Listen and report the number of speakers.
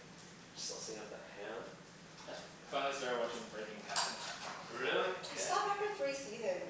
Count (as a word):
three